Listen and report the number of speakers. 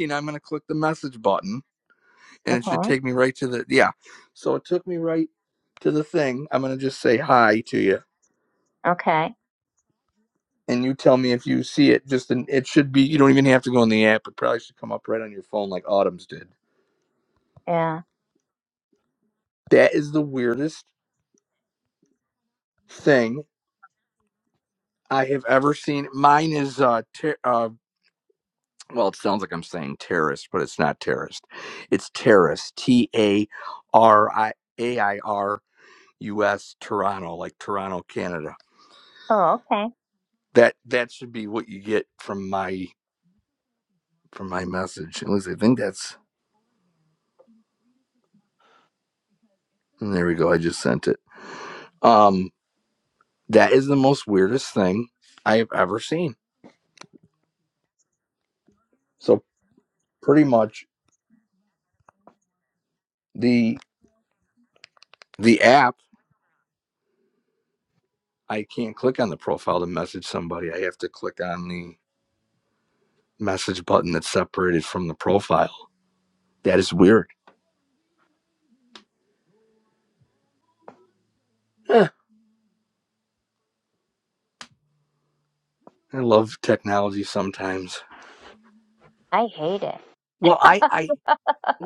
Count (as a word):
two